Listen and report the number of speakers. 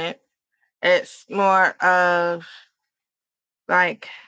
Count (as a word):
one